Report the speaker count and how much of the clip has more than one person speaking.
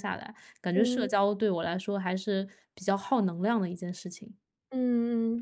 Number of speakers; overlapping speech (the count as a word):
two, about 7%